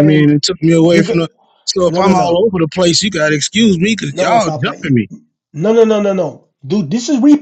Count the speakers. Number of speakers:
two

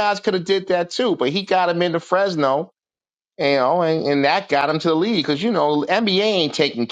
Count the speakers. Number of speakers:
one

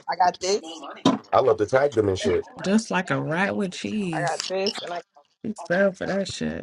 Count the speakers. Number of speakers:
three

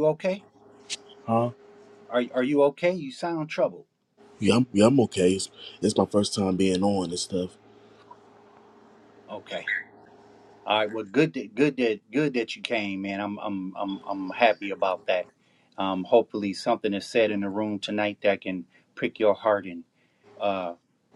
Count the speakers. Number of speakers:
two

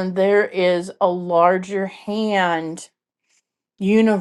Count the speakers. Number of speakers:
one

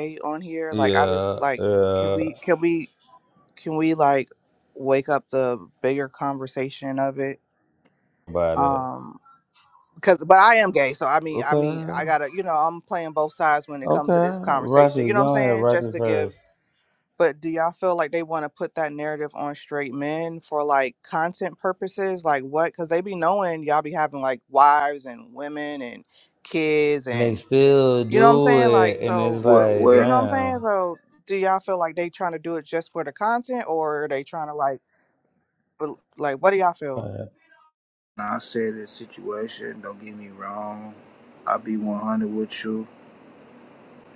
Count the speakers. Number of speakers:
three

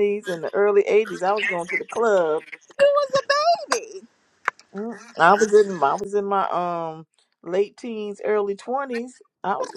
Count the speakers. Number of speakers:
two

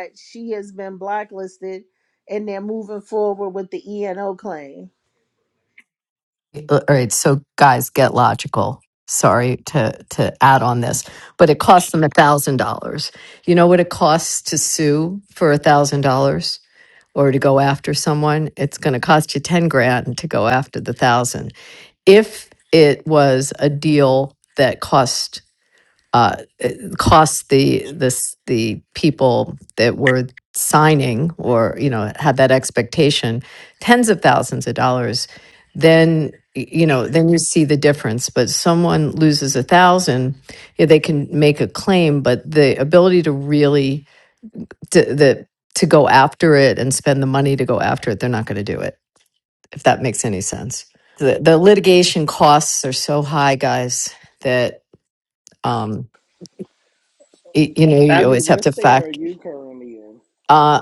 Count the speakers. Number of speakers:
three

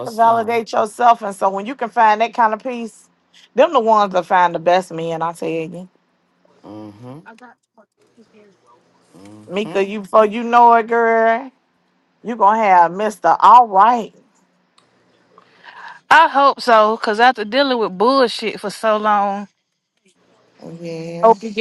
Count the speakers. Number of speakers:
three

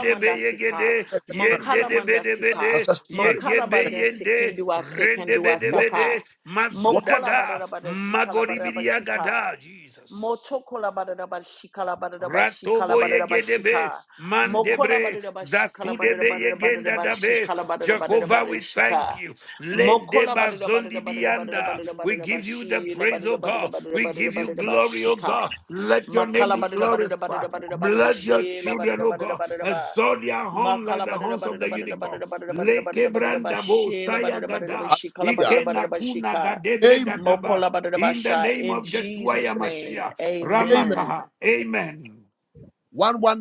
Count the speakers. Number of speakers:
three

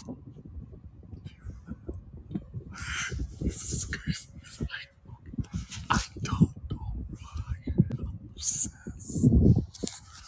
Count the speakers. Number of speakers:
zero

